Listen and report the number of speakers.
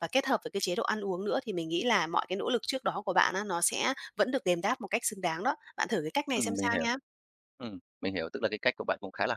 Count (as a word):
two